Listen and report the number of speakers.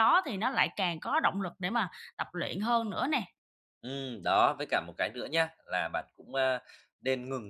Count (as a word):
two